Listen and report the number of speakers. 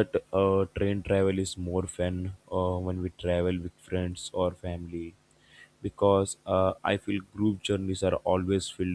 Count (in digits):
1